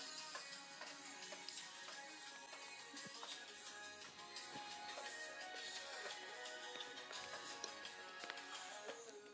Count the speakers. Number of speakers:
zero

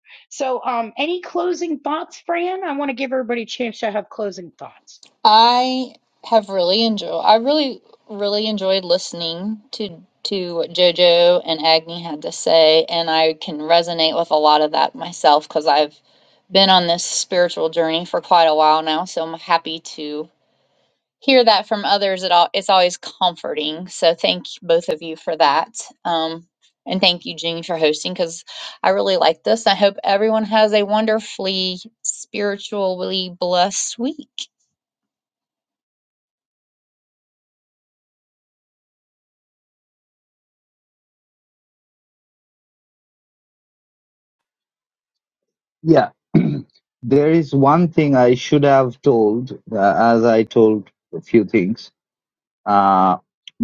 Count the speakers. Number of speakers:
three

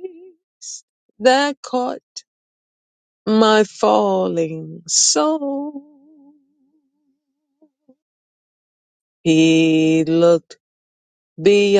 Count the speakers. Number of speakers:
one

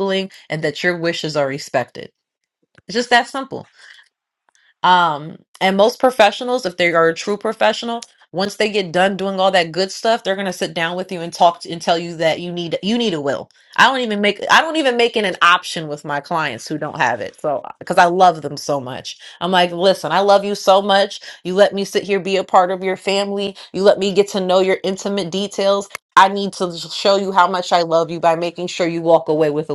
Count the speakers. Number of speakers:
one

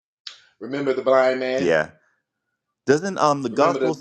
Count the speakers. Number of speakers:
two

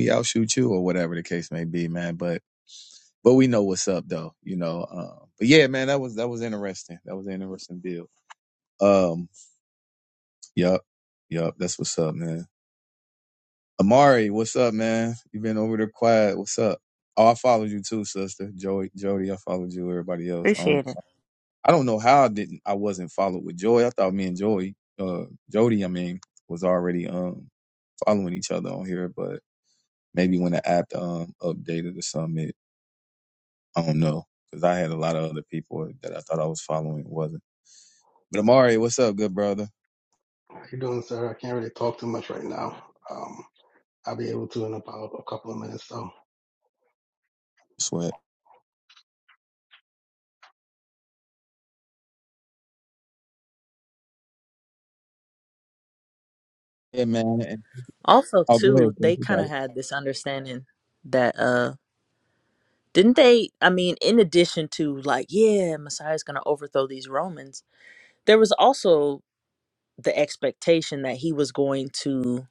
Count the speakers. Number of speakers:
three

